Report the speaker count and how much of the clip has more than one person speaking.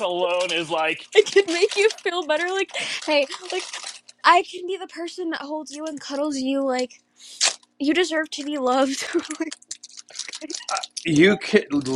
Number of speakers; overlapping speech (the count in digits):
3, no overlap